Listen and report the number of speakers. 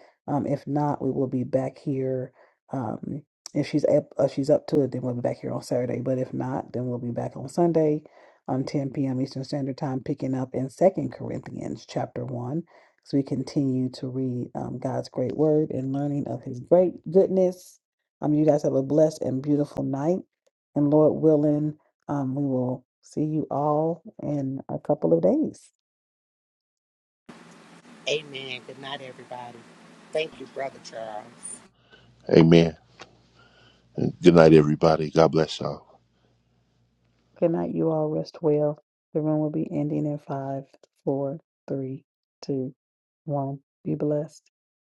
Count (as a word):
three